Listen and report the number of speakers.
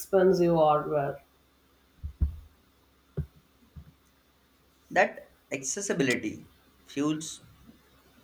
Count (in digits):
2